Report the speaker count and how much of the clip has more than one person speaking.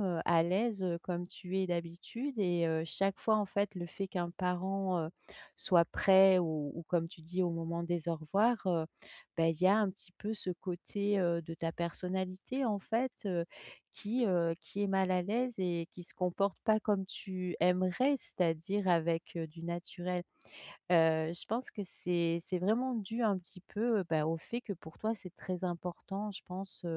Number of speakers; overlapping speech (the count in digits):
1, no overlap